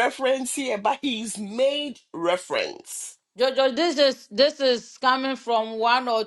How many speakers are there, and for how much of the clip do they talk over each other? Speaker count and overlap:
two, no overlap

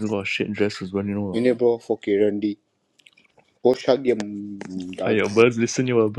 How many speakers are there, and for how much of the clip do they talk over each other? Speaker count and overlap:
two, about 4%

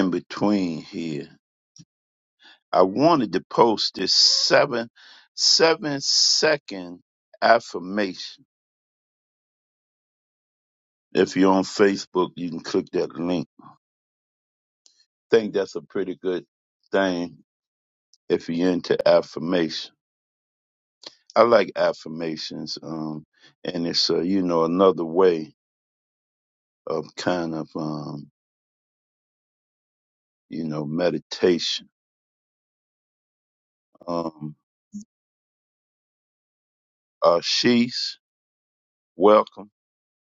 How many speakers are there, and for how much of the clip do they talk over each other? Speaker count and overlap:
one, no overlap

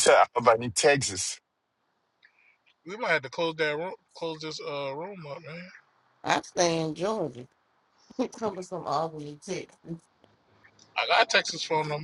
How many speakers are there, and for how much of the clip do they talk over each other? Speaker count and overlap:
three, no overlap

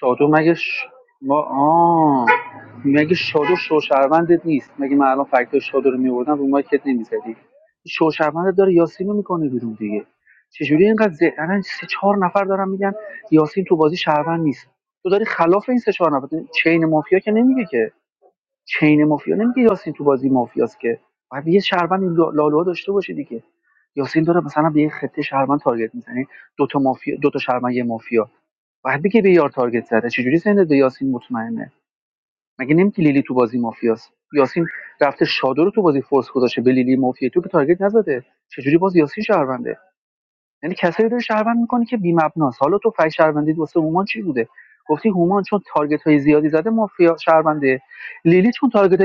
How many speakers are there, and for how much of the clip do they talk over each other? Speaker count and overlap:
one, no overlap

